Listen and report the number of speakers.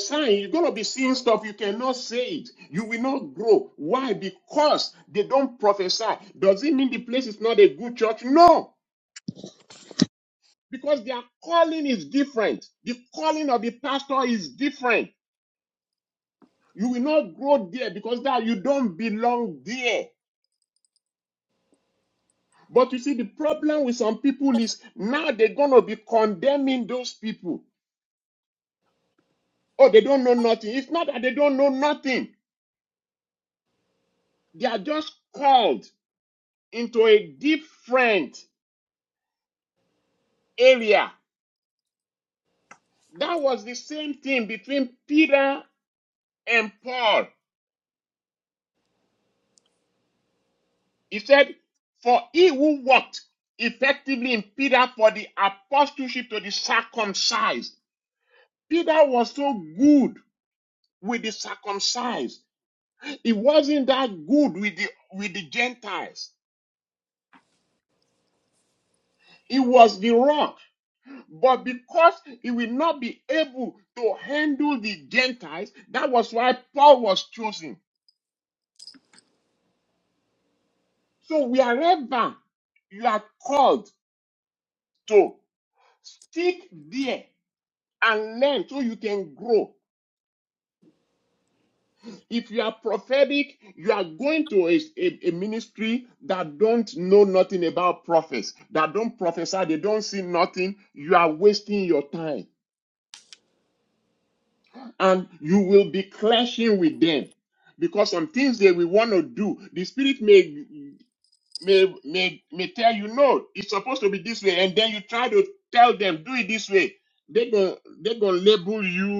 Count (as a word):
one